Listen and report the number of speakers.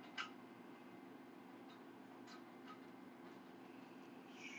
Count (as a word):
zero